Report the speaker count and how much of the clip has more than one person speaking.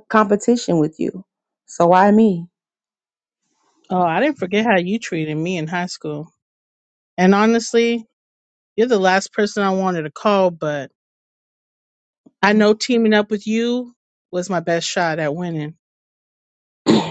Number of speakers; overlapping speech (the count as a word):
two, no overlap